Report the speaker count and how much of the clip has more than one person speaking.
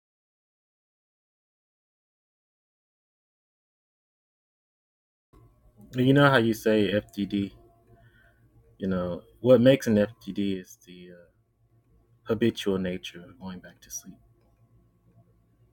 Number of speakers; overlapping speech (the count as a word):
one, no overlap